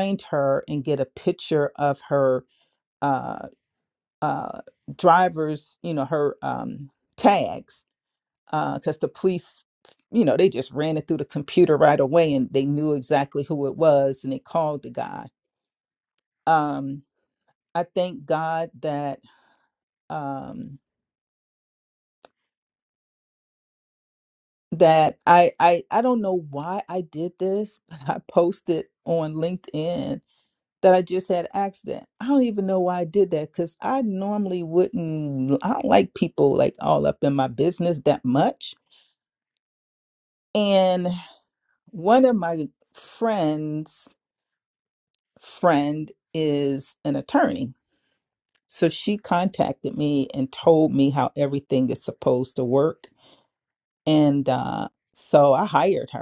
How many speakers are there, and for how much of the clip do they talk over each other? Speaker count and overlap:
one, no overlap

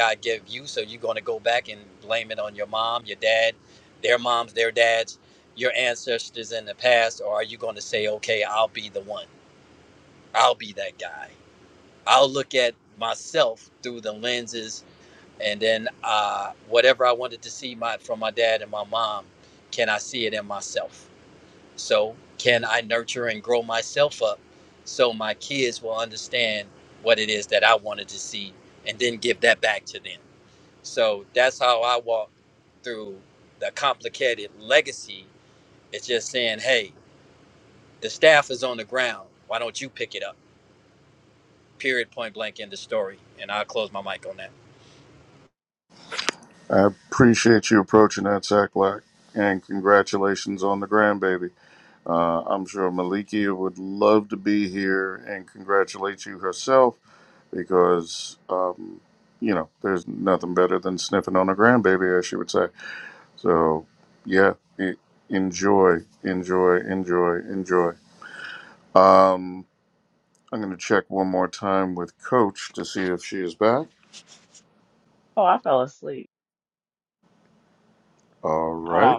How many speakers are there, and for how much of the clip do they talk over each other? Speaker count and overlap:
three, under 1%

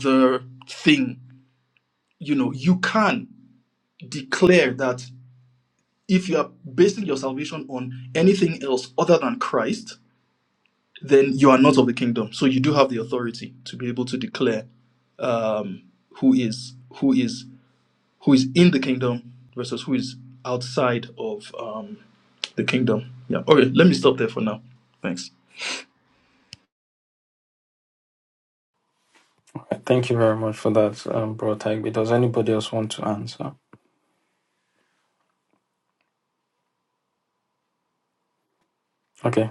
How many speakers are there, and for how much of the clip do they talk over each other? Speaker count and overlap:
two, no overlap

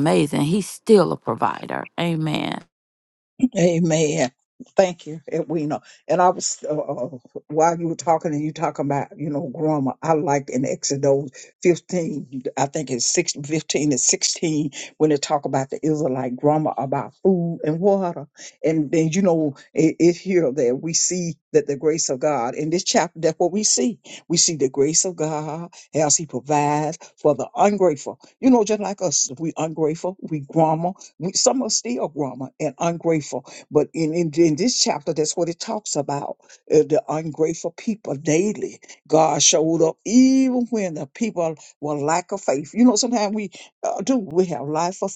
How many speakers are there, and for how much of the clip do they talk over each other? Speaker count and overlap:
two, no overlap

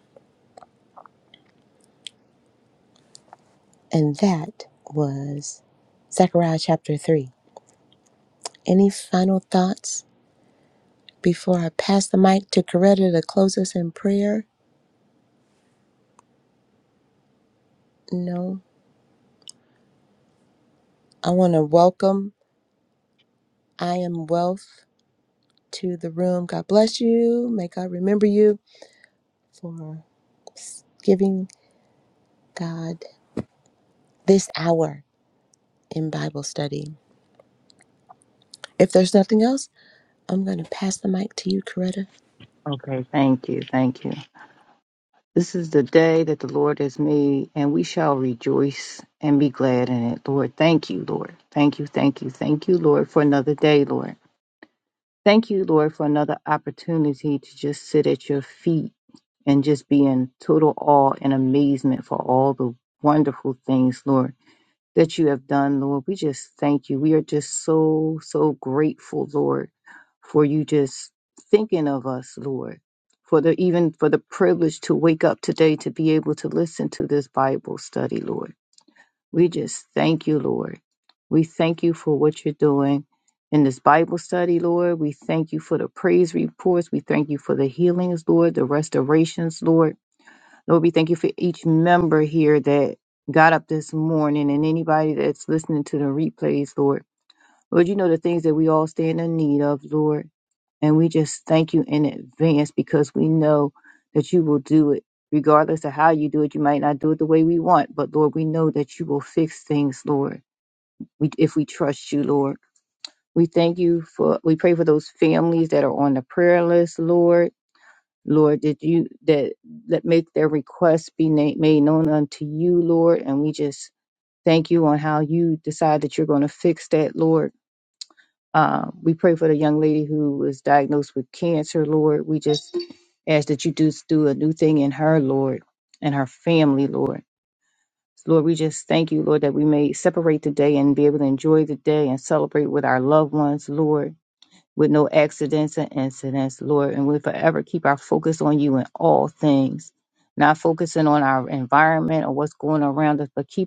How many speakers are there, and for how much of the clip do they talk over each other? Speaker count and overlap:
two, no overlap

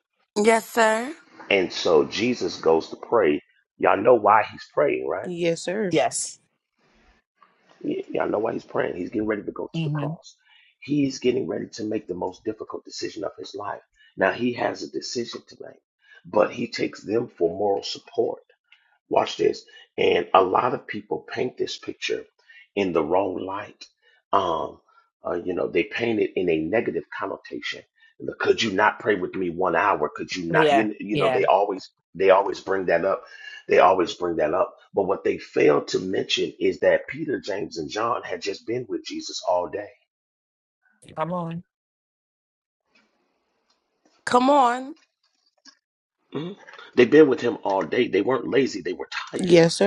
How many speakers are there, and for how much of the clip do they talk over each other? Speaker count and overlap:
four, about 3%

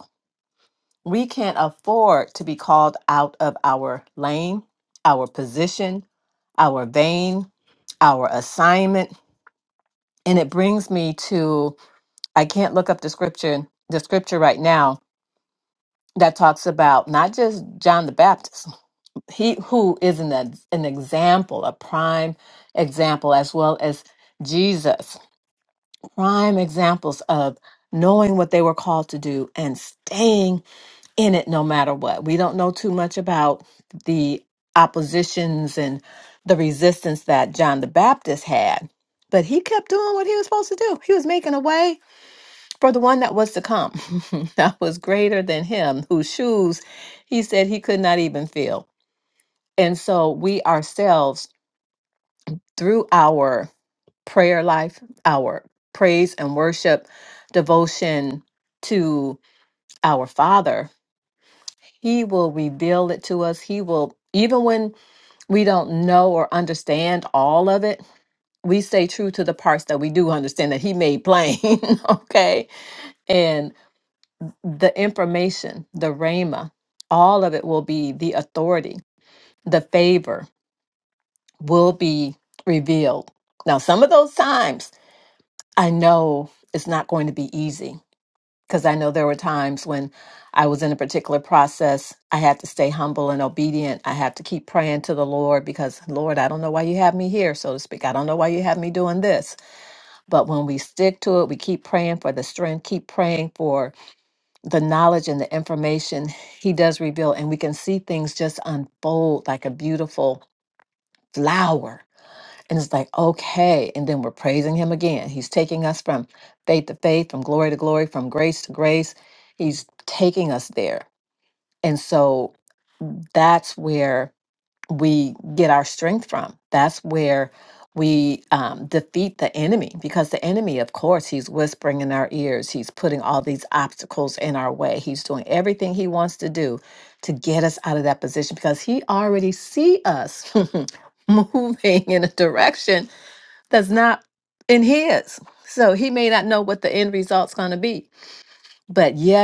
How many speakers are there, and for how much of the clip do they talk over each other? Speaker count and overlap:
one, no overlap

